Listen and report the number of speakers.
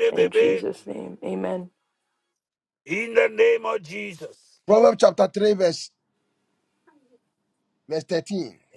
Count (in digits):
3